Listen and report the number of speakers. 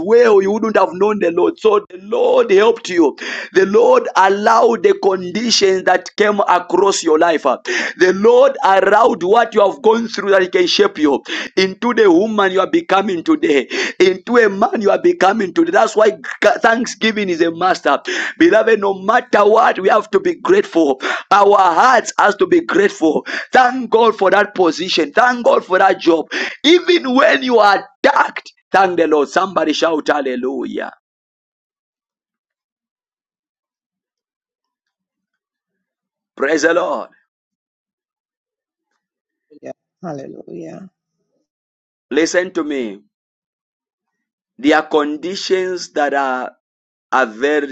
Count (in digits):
2